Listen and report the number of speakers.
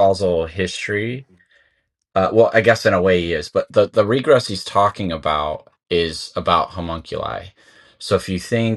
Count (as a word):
one